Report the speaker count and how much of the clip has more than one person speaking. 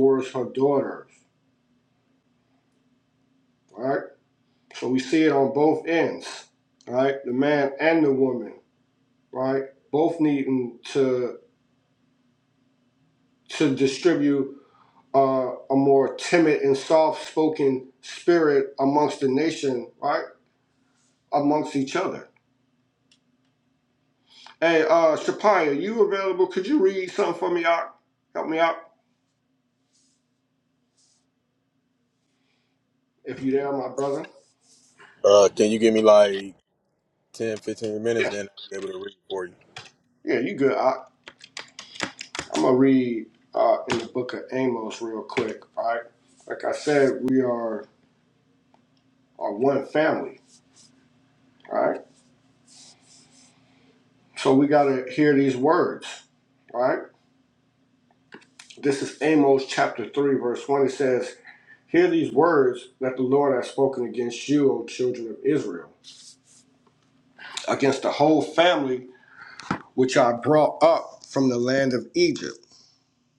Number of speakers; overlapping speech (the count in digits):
2, under 1%